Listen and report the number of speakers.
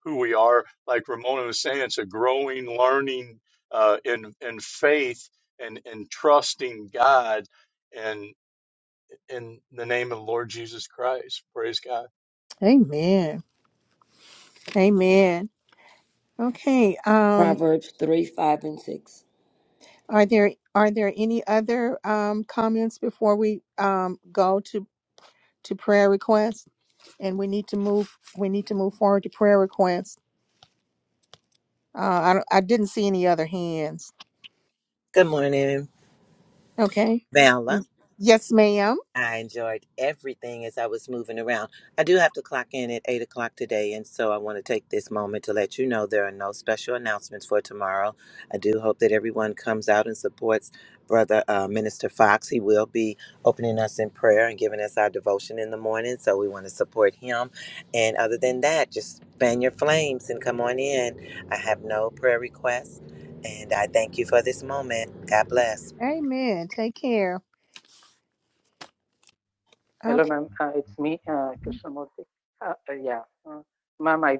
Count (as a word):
five